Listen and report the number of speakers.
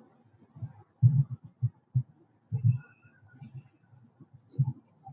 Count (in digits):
0